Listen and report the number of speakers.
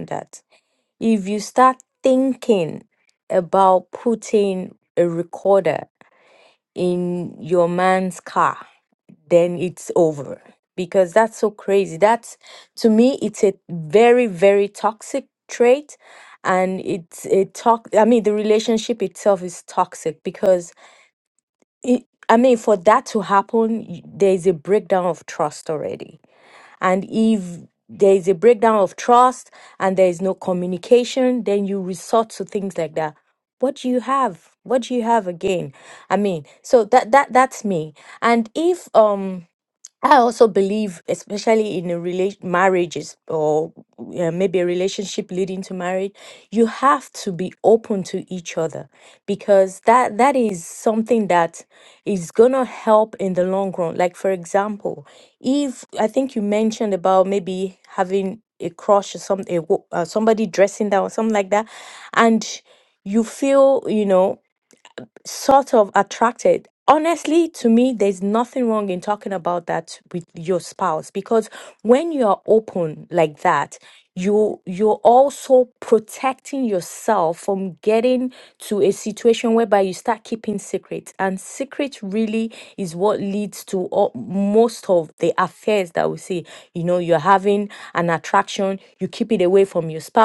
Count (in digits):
1